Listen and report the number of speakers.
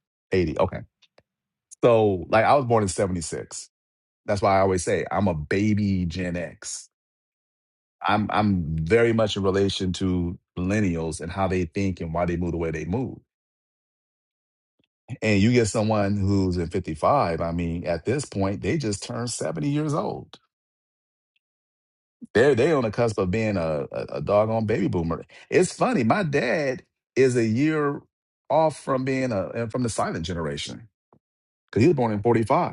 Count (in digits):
1